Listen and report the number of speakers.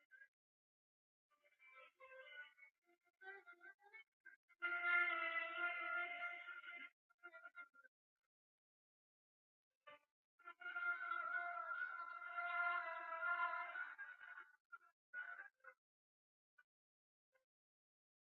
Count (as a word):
zero